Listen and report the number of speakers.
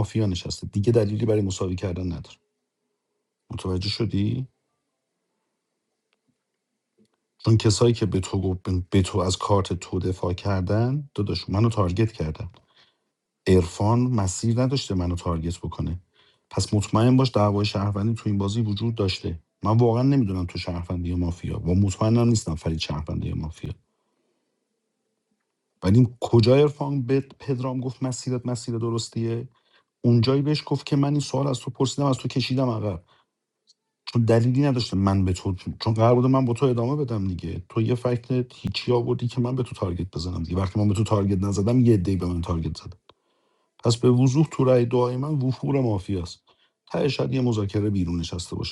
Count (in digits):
1